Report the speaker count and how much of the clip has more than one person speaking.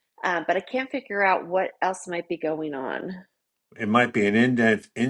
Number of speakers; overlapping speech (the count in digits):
2, no overlap